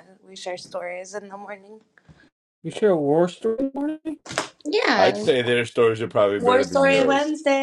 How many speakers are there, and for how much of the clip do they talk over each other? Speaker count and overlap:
3, about 15%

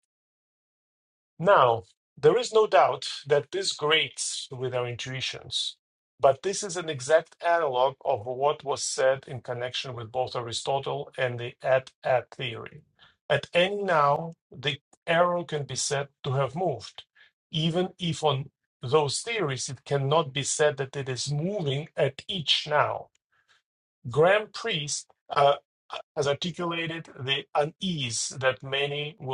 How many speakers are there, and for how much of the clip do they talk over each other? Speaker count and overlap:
1, no overlap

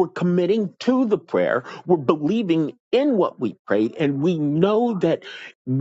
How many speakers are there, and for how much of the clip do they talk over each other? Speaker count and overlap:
1, no overlap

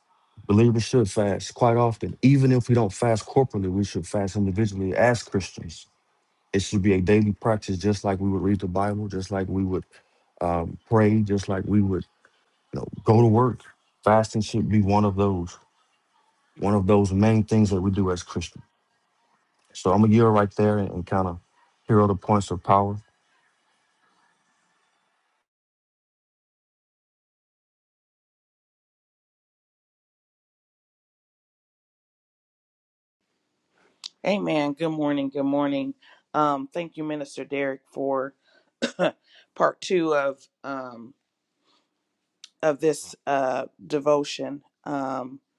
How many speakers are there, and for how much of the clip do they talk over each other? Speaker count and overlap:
2, no overlap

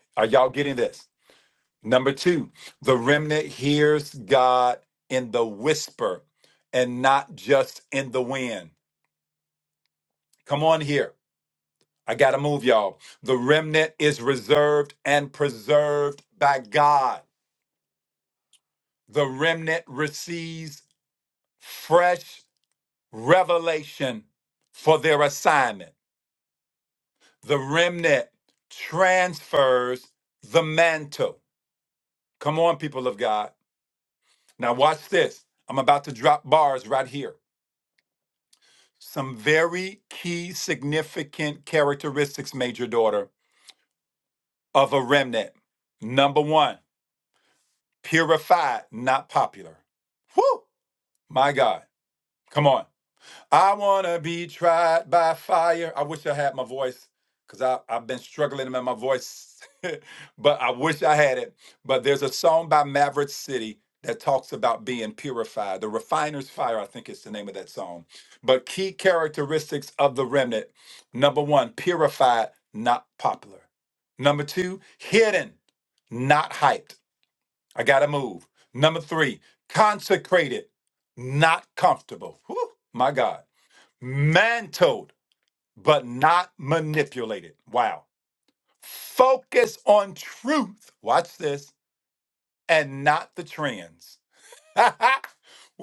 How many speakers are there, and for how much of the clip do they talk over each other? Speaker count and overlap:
1, no overlap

